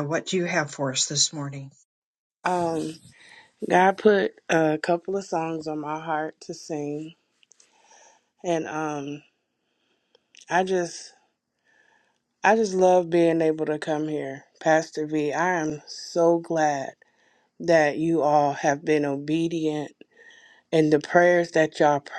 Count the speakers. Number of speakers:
two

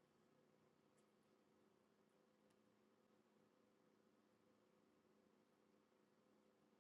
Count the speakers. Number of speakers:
zero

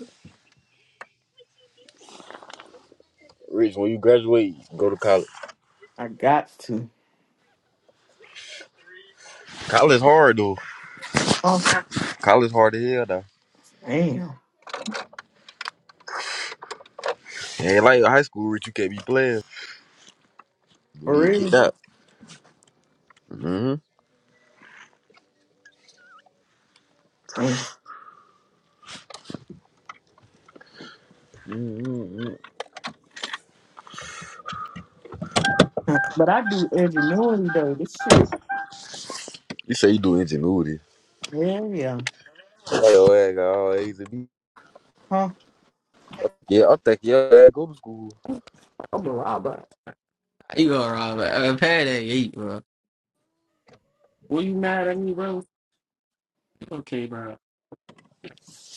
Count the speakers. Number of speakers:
three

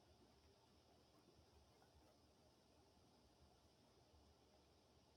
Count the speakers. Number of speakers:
zero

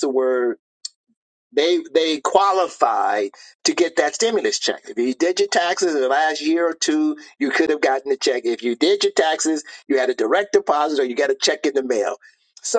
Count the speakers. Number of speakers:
one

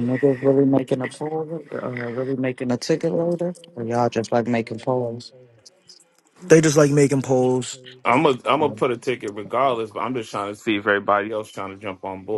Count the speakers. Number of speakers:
three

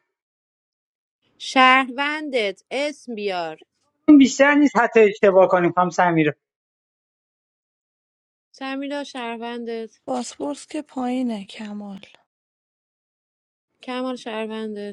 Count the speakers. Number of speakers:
three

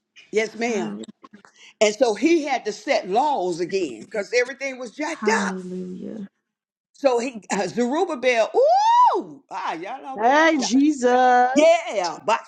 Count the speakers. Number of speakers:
three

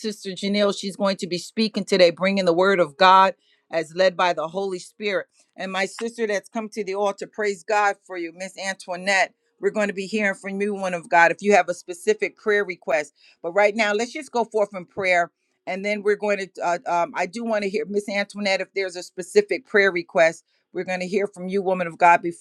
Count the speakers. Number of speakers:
one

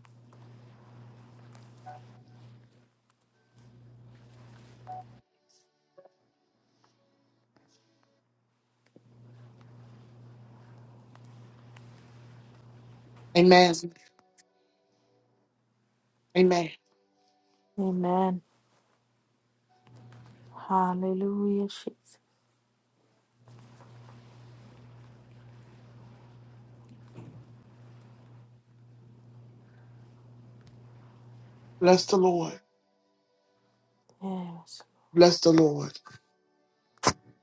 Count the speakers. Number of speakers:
two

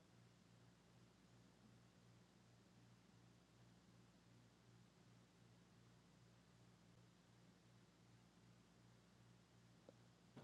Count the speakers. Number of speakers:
zero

